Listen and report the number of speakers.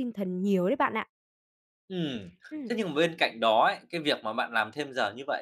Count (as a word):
two